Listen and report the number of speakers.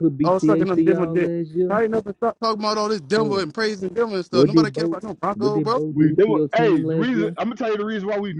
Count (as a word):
three